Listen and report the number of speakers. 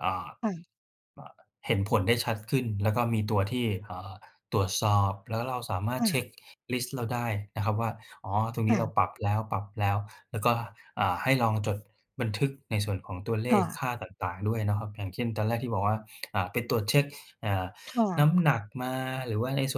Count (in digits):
2